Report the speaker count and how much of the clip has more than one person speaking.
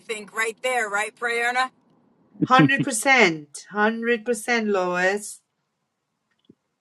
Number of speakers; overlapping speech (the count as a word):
two, no overlap